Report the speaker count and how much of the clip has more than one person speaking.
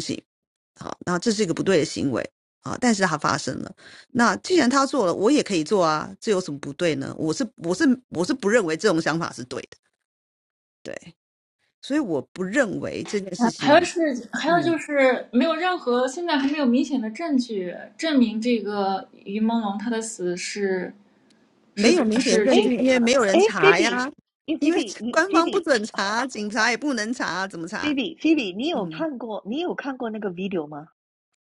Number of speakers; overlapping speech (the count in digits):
3, about 10%